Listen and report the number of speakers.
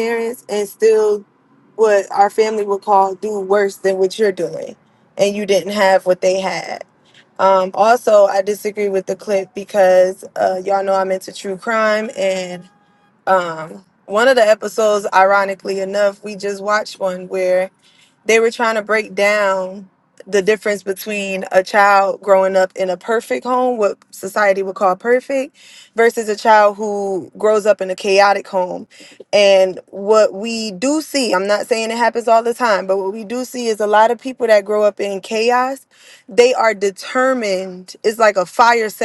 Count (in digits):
1